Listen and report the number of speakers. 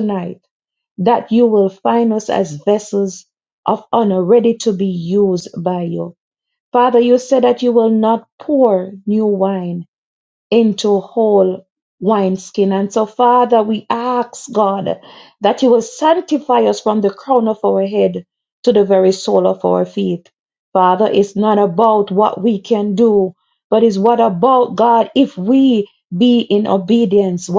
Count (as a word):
one